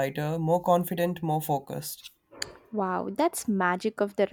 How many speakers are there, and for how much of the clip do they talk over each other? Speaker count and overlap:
2, no overlap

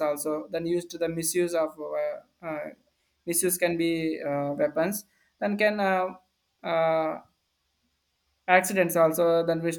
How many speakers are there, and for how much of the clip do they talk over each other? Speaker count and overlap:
1, no overlap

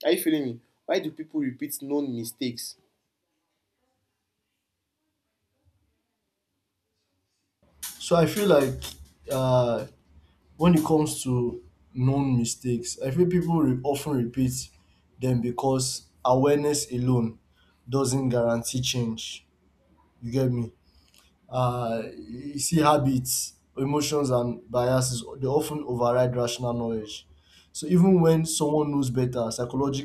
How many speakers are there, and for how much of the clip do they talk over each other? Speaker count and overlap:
2, under 1%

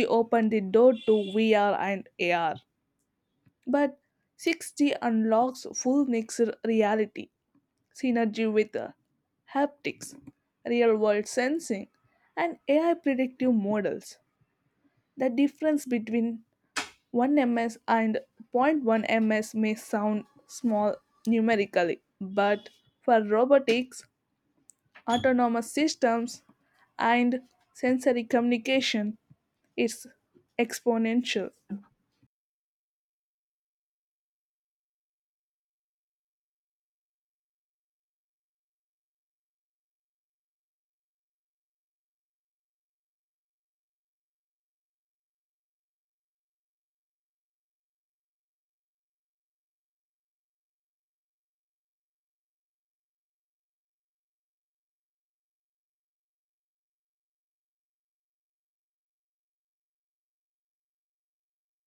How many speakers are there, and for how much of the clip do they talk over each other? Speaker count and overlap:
1, no overlap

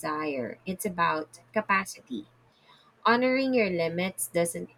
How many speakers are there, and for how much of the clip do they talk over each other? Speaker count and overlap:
1, no overlap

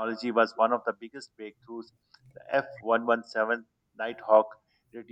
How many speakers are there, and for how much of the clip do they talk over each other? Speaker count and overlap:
1, no overlap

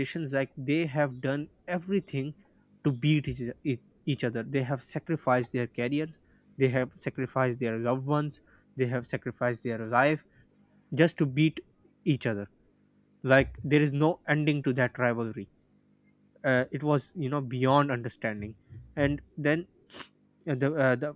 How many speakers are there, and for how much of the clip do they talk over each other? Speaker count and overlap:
1, no overlap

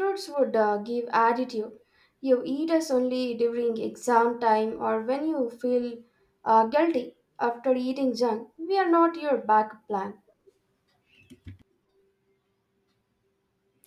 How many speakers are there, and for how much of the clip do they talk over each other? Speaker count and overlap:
1, no overlap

